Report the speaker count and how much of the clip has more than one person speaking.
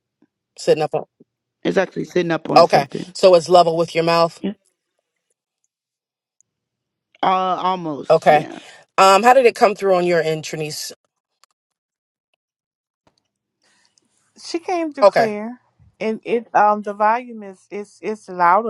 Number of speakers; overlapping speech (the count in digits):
3, about 5%